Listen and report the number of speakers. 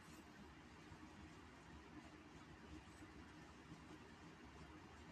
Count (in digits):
0